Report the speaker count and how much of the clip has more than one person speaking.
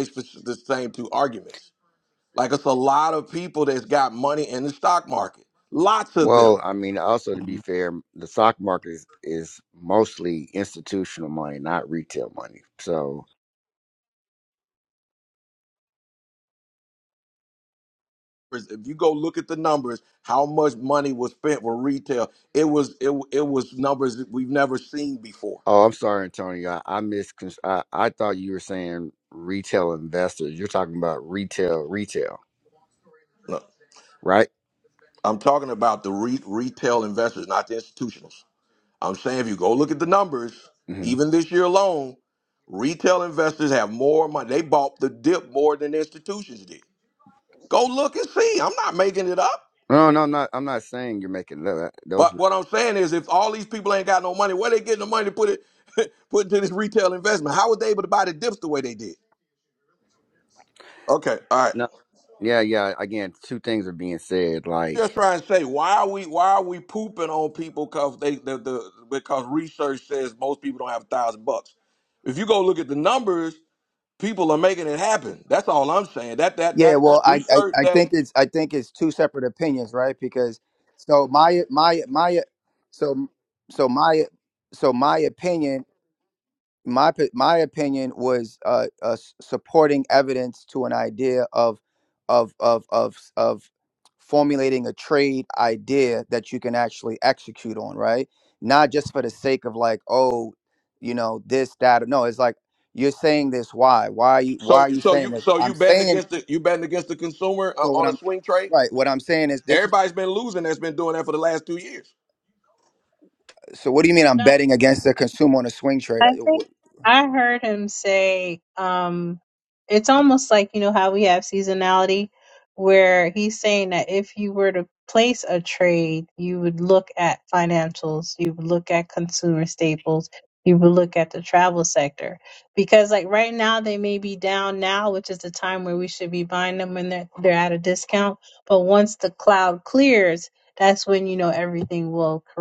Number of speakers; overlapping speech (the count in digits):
4, about 3%